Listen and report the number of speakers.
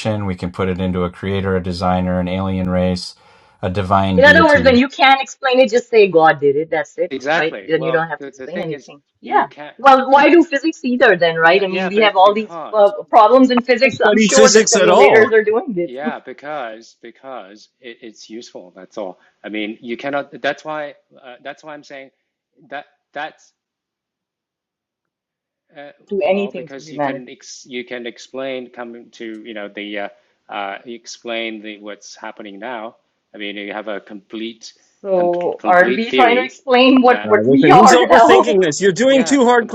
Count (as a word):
four